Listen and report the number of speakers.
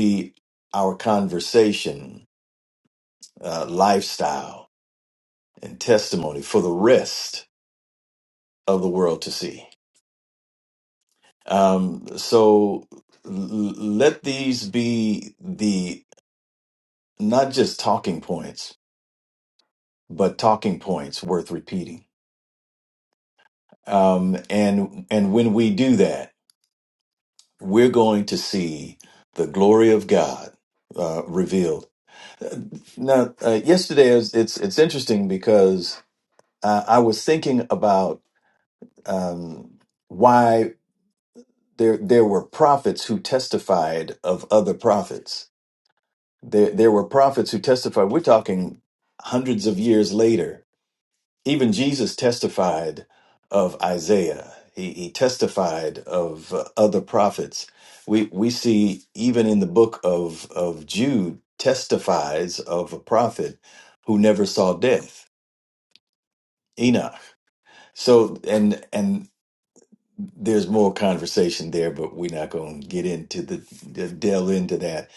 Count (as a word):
one